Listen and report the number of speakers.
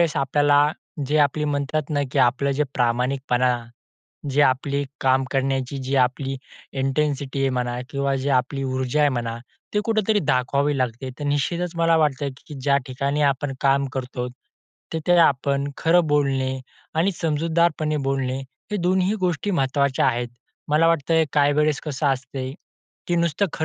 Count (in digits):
1